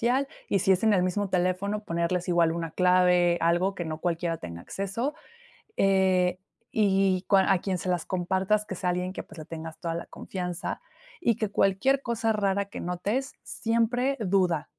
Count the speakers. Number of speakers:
one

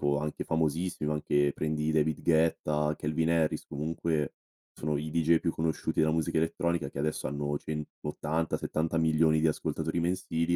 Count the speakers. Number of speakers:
one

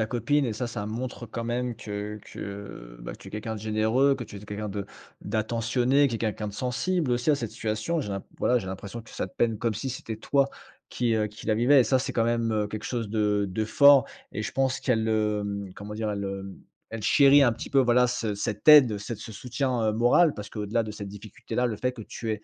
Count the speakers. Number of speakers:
one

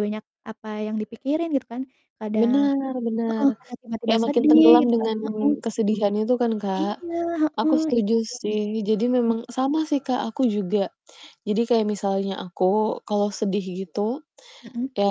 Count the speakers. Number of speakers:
two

